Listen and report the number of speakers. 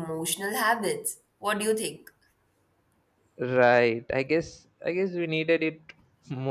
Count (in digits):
2